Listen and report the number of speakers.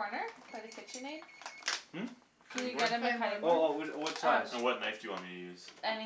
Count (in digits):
3